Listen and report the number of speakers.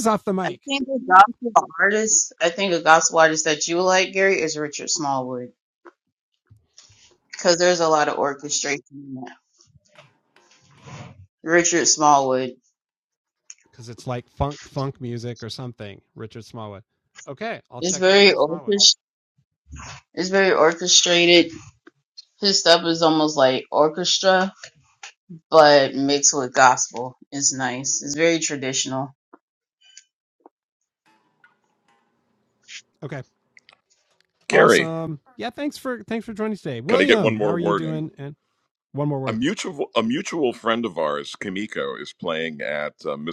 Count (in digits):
3